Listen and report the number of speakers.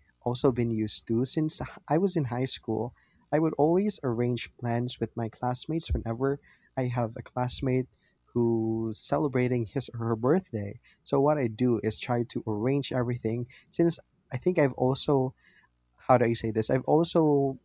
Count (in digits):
1